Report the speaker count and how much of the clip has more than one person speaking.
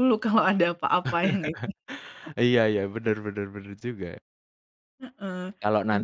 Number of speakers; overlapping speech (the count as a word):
two, about 2%